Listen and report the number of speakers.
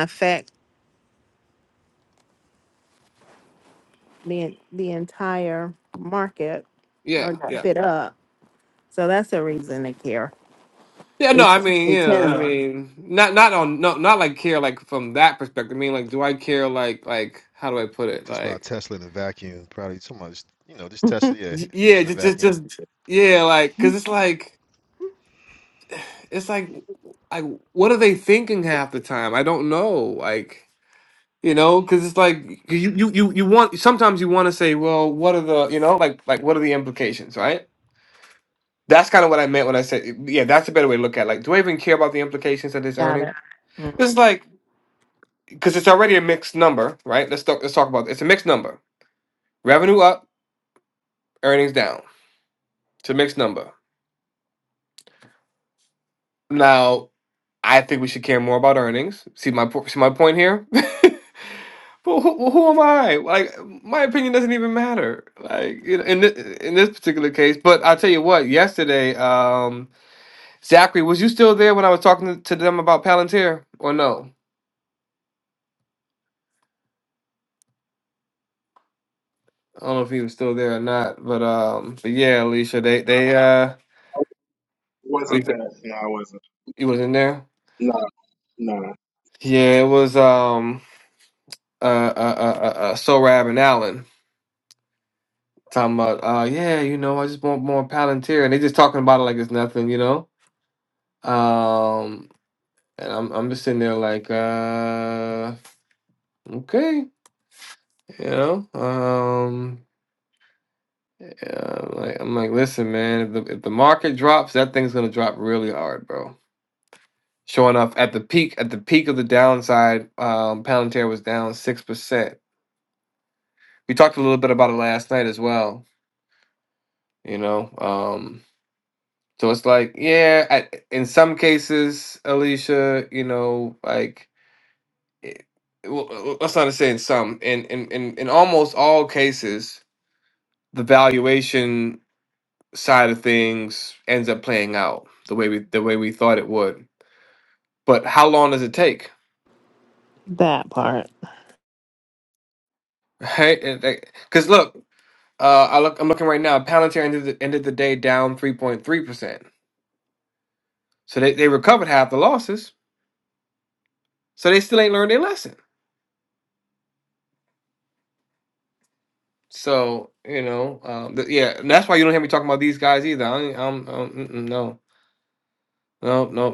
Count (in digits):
4